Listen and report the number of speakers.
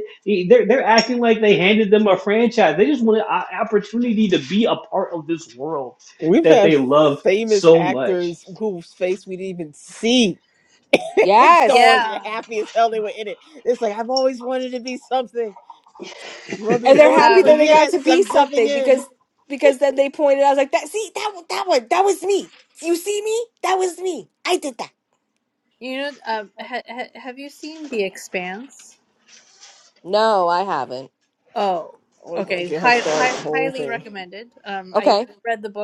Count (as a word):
four